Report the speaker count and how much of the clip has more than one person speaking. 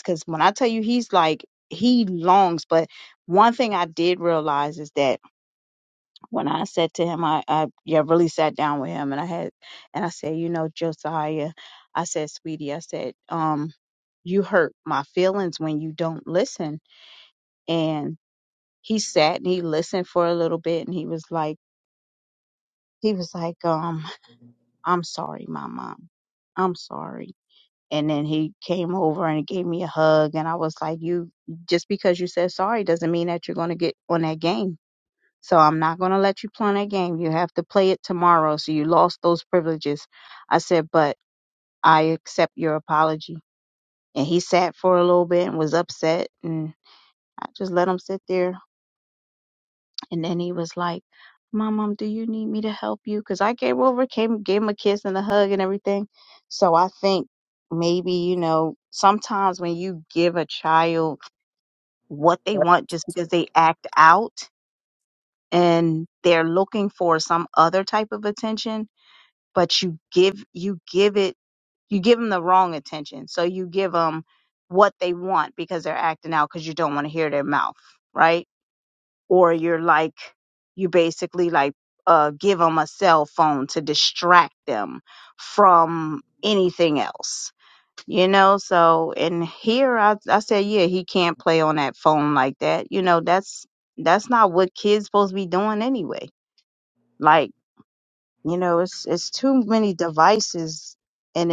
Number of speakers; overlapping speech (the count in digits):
1, no overlap